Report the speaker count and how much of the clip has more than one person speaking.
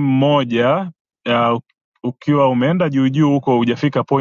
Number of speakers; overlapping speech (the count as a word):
one, no overlap